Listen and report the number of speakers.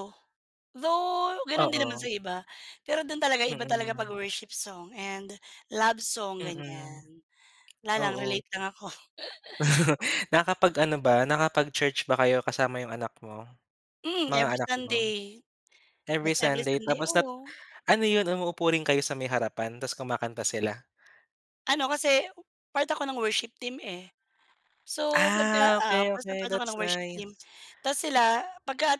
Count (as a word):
two